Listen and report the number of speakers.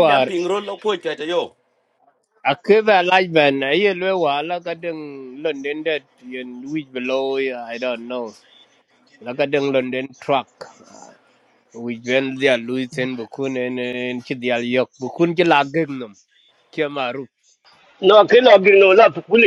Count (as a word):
three